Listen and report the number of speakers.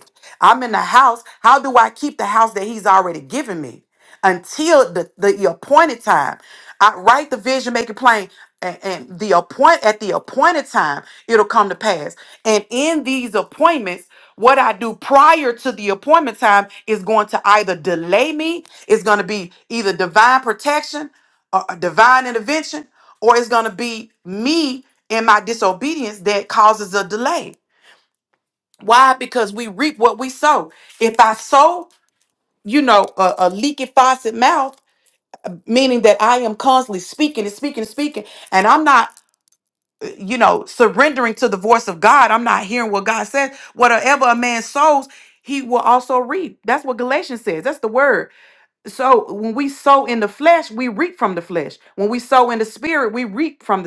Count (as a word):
one